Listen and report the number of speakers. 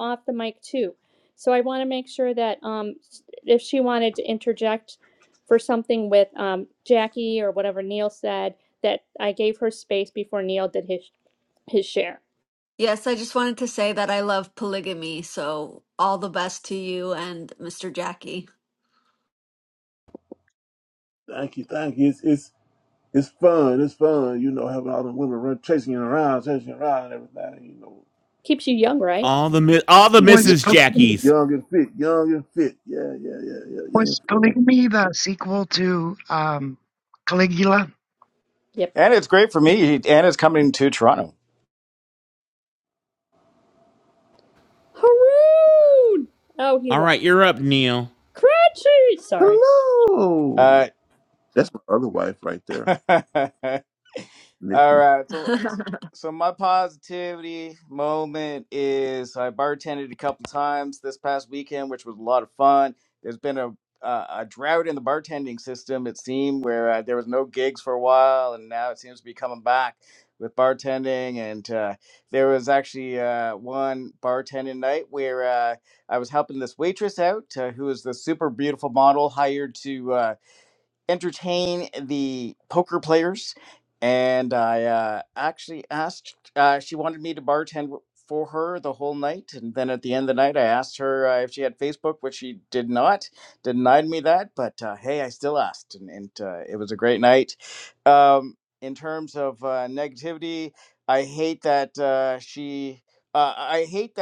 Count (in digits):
6